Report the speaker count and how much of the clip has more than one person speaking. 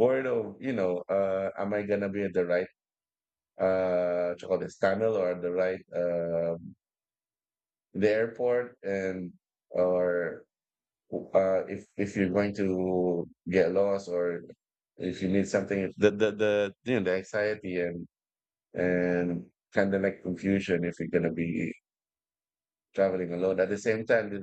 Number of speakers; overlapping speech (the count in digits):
1, no overlap